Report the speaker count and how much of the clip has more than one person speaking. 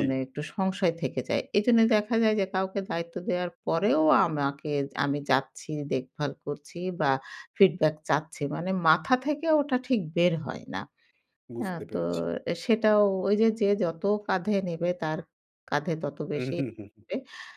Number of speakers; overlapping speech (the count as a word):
two, about 5%